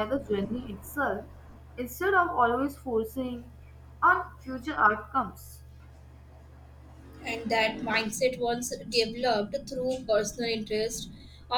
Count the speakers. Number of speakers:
2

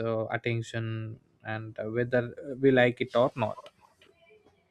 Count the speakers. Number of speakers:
1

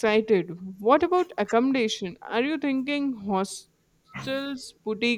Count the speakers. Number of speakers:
1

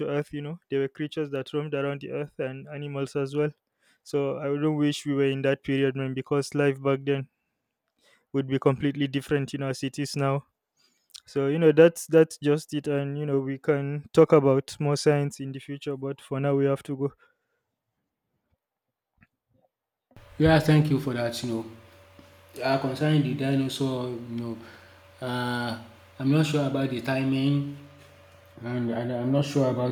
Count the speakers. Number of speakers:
2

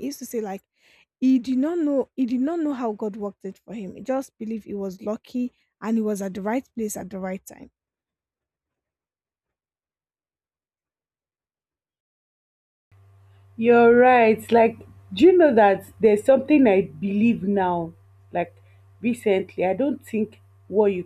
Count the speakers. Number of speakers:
2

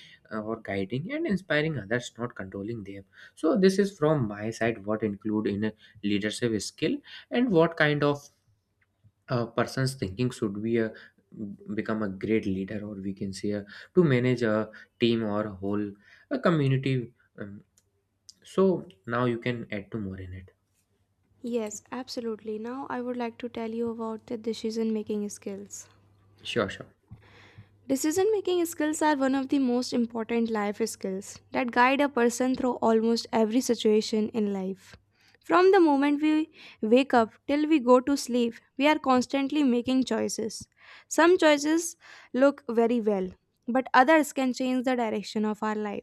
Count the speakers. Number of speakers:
2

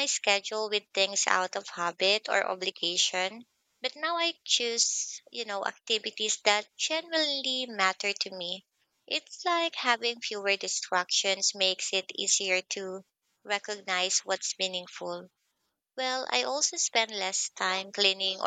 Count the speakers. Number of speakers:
1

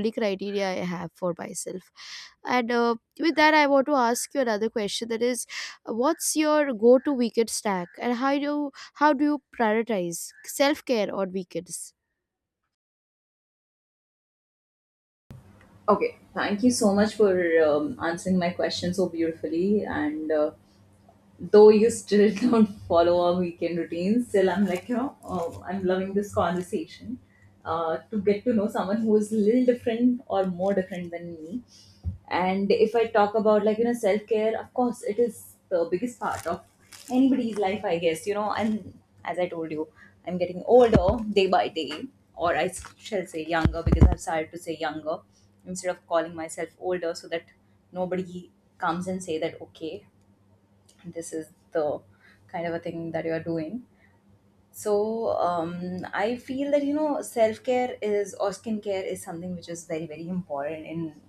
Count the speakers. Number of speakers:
2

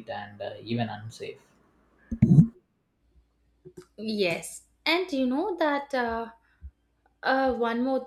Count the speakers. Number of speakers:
2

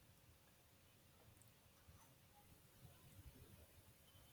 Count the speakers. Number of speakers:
0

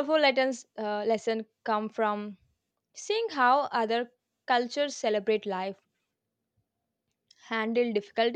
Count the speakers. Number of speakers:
1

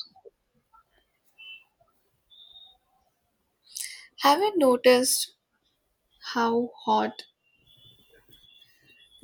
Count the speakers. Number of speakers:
1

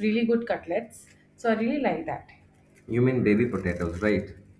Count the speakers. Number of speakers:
2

